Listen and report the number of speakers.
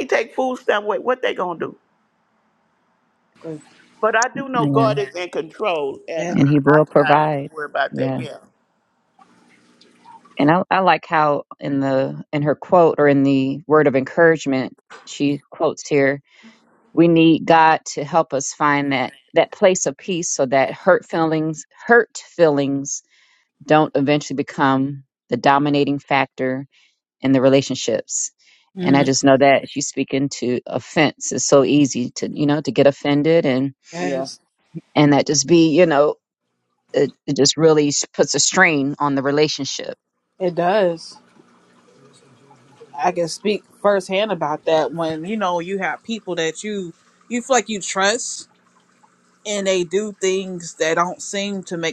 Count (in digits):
3